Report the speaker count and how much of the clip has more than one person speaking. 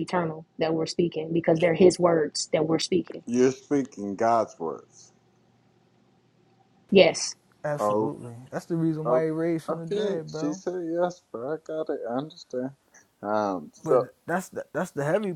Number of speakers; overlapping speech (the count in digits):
3, about 11%